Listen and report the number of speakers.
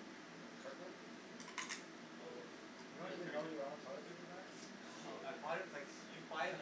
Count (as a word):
two